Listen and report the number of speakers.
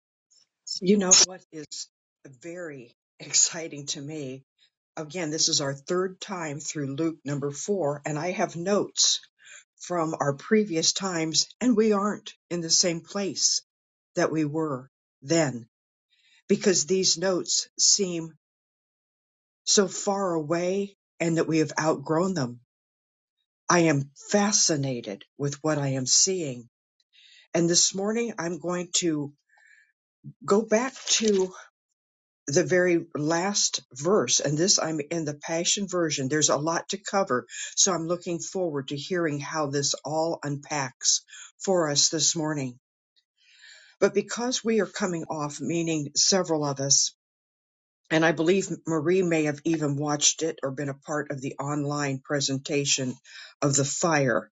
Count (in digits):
1